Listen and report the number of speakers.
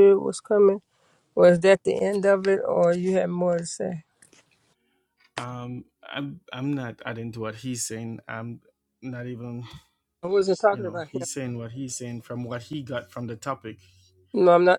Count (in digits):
2